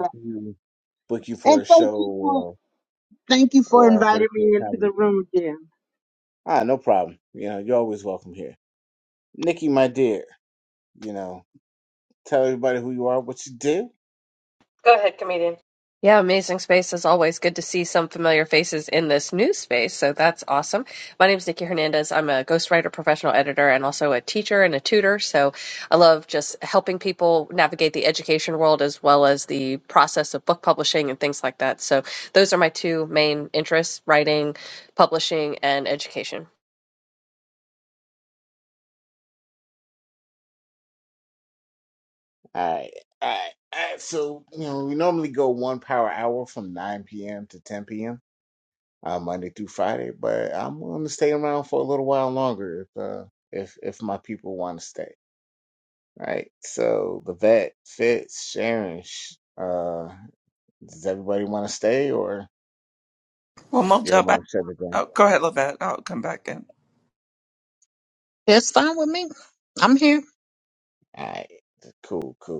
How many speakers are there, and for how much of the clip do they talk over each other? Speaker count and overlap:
5, about 4%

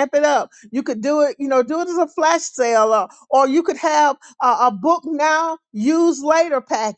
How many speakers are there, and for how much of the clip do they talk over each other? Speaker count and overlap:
1, no overlap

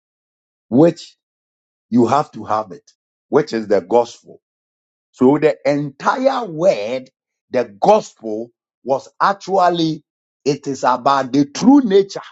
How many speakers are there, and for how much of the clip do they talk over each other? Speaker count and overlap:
1, no overlap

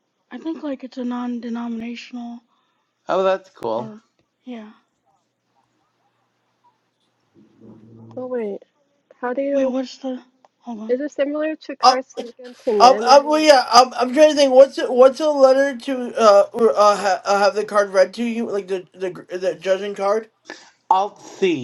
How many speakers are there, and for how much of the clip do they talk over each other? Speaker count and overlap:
4, about 6%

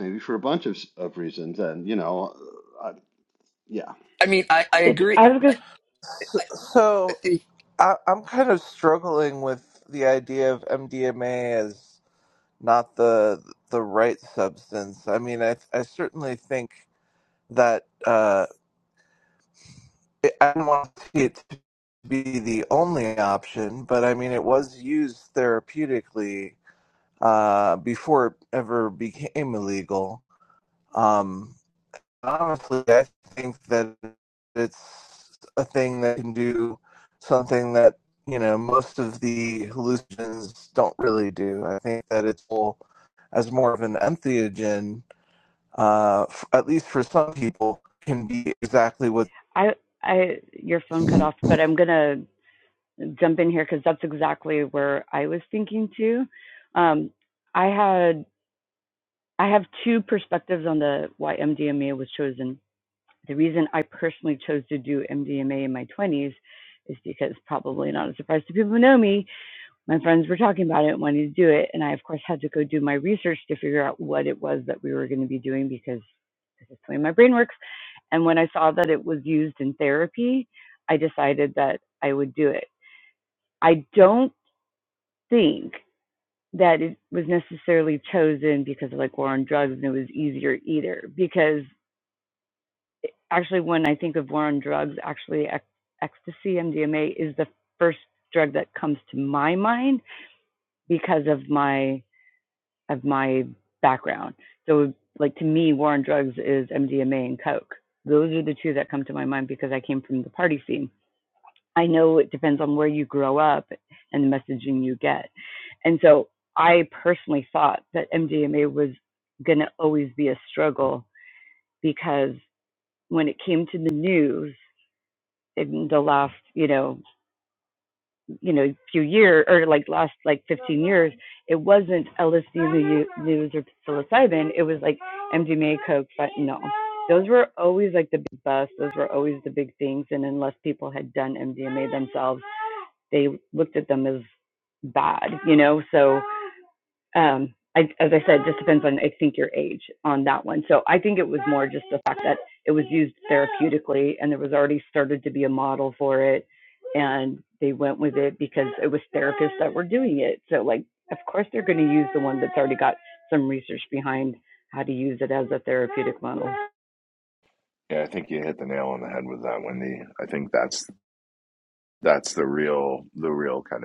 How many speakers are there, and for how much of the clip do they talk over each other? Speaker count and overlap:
5, under 1%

